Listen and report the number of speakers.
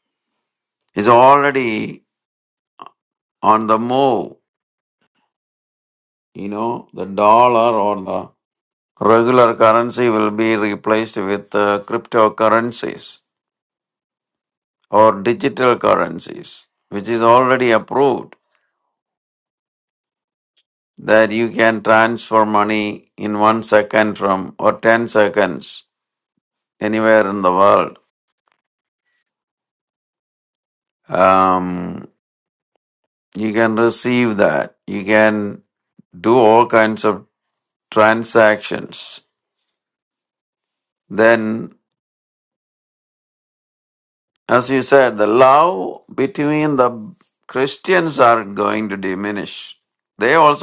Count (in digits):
1